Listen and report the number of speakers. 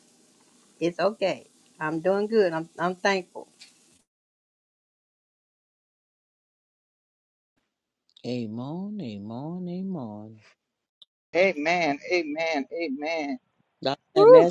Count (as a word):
three